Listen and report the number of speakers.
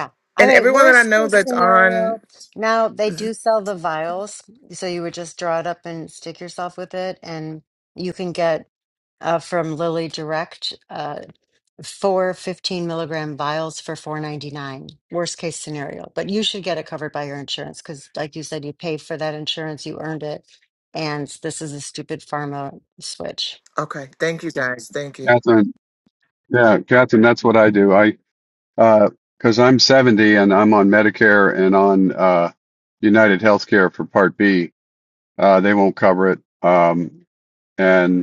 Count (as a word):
three